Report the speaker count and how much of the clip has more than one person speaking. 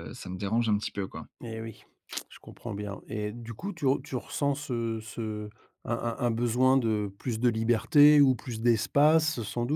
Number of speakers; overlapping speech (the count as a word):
two, no overlap